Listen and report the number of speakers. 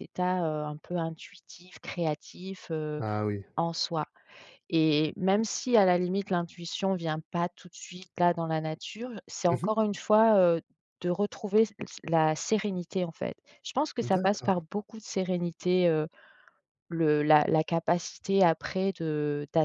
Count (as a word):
two